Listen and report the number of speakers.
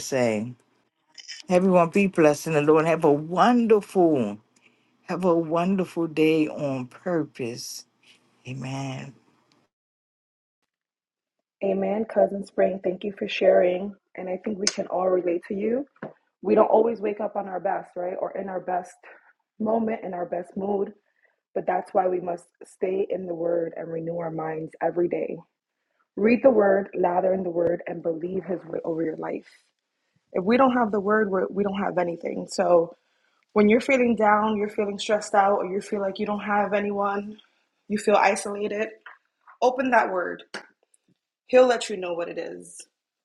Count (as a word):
two